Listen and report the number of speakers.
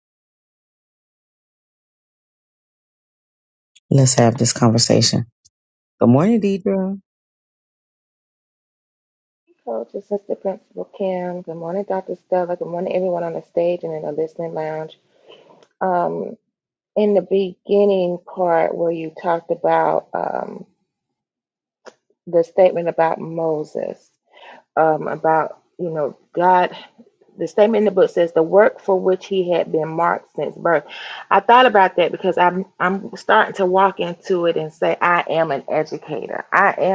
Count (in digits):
2